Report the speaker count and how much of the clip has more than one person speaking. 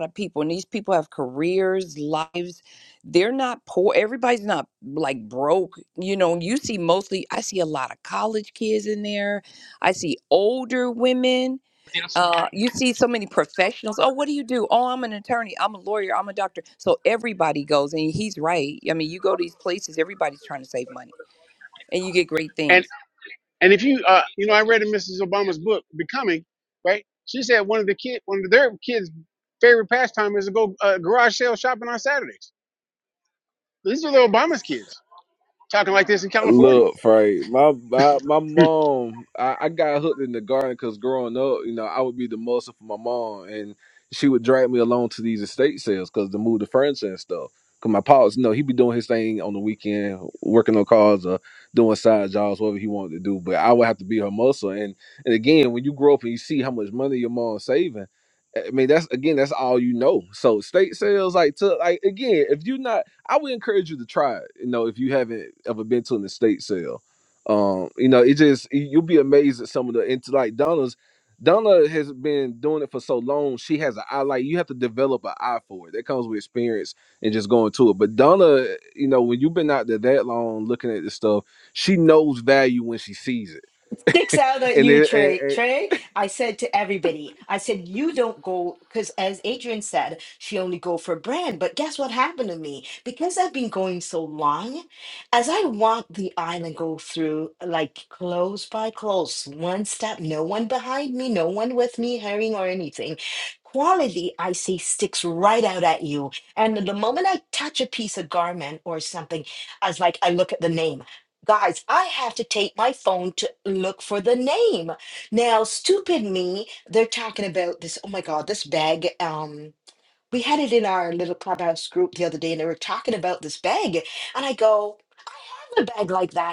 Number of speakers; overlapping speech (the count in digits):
4, about 1%